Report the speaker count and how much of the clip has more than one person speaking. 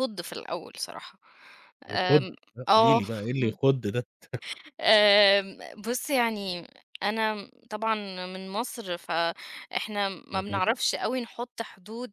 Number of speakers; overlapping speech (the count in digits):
2, about 9%